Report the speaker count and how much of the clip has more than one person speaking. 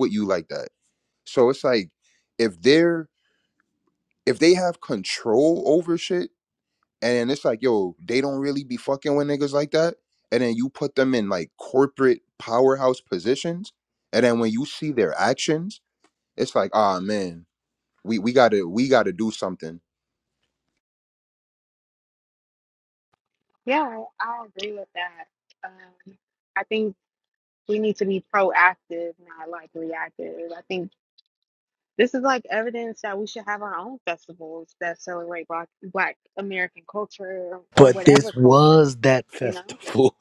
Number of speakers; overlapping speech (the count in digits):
3, about 4%